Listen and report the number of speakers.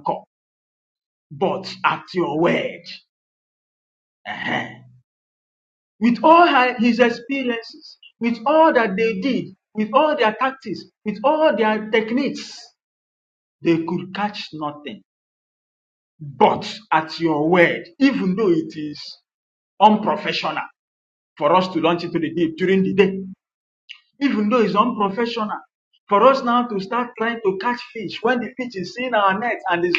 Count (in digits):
1